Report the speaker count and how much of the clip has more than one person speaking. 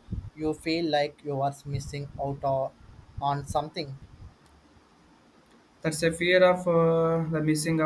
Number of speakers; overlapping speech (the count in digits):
2, no overlap